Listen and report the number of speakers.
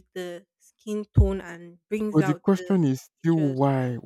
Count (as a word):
two